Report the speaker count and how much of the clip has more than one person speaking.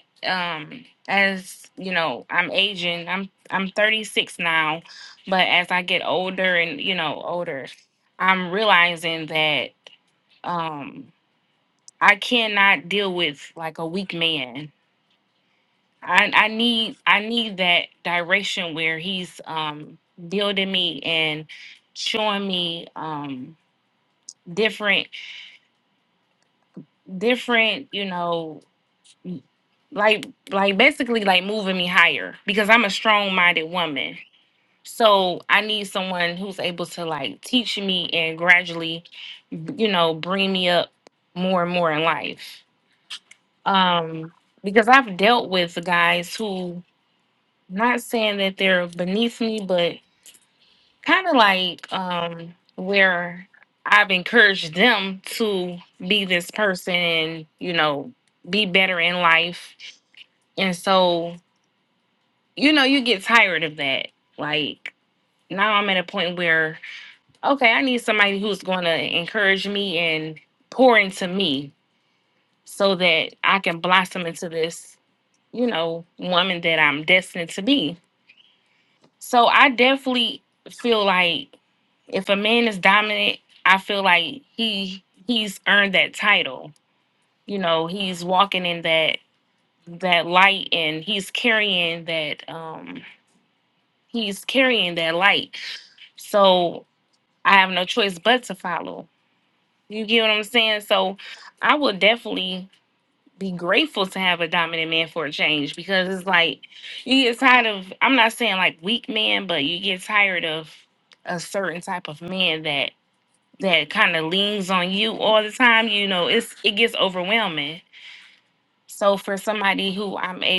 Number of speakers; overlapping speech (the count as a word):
one, no overlap